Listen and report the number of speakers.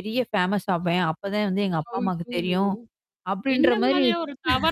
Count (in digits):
2